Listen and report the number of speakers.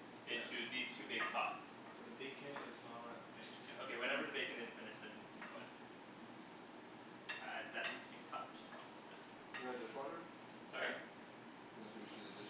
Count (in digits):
3